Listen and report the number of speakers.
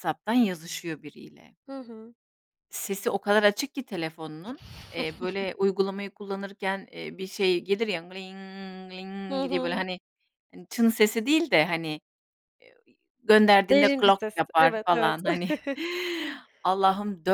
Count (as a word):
two